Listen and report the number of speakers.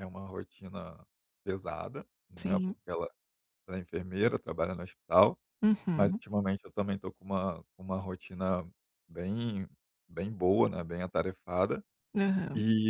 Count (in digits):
2